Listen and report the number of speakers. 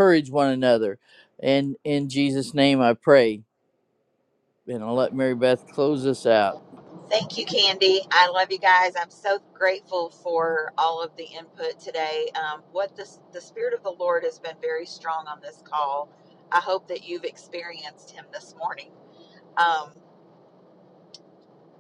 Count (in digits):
2